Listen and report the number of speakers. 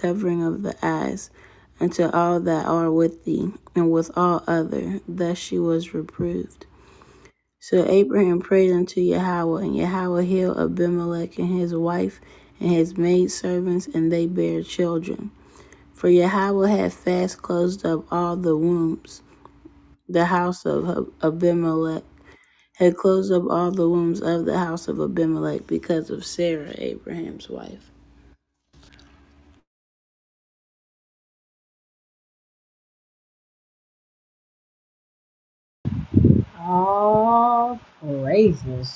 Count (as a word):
two